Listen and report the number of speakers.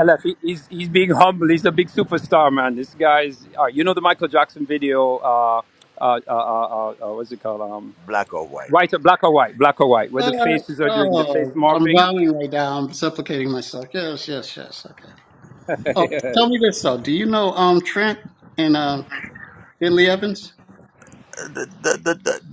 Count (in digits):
3